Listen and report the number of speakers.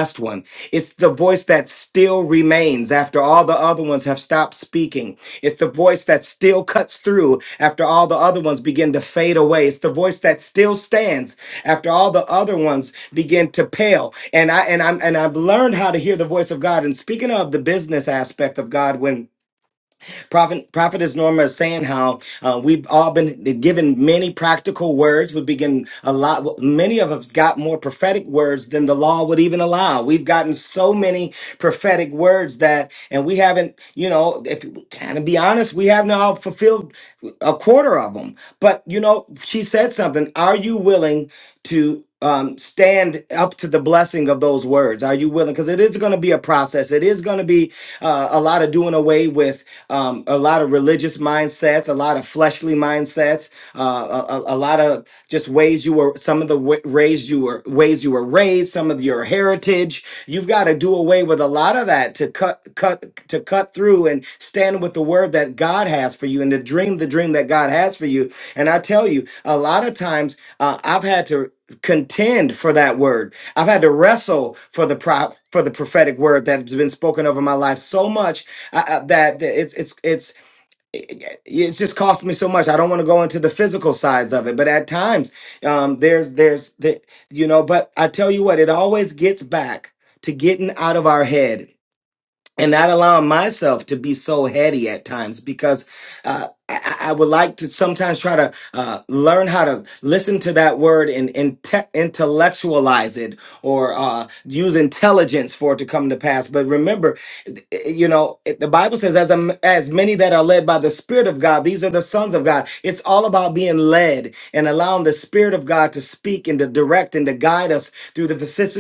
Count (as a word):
one